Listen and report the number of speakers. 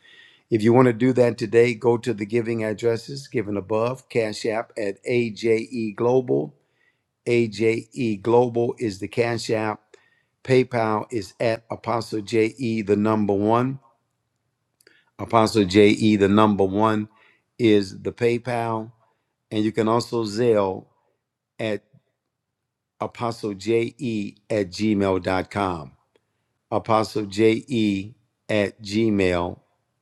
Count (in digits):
1